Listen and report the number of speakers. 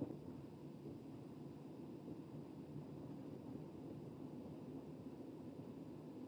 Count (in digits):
0